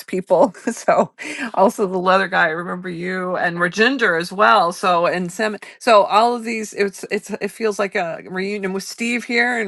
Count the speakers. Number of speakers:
1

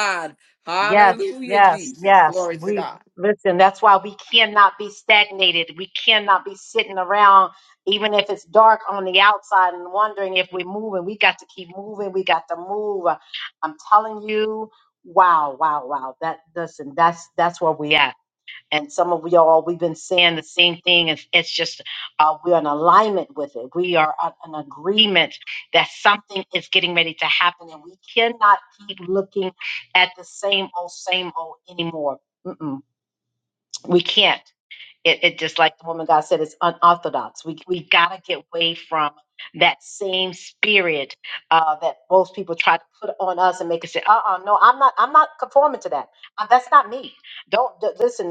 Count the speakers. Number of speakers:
2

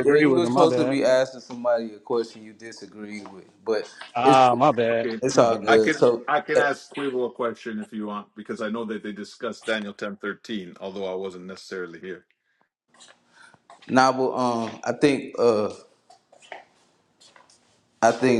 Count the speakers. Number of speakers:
3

